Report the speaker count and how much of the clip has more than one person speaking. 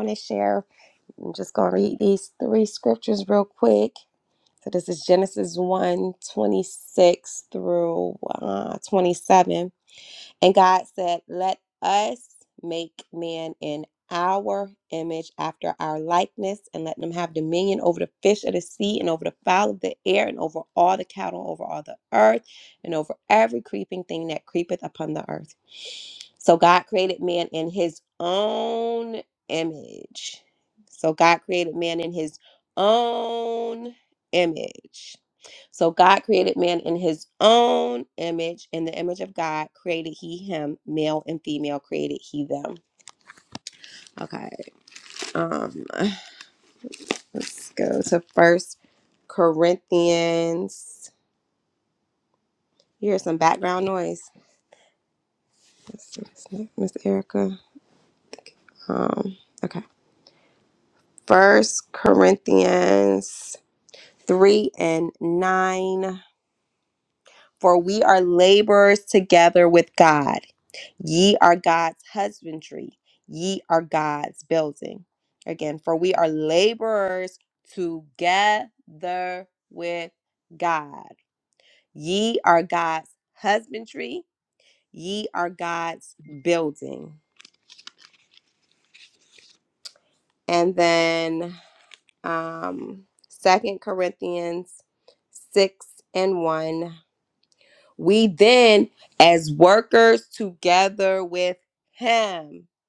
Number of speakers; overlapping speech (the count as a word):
one, no overlap